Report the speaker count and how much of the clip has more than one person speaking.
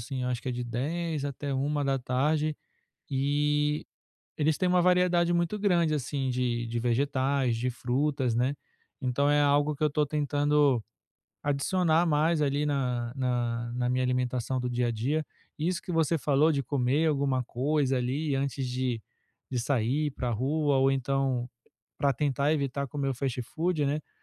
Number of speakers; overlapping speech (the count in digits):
1, no overlap